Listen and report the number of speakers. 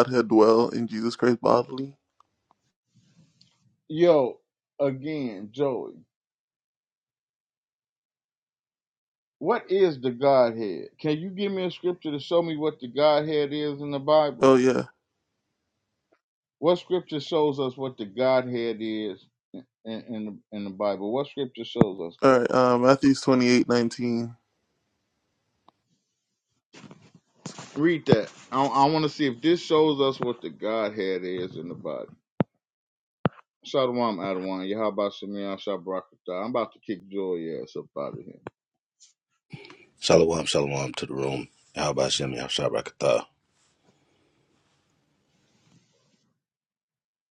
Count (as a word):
three